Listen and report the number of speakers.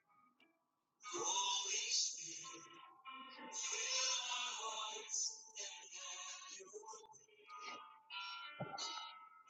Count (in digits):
0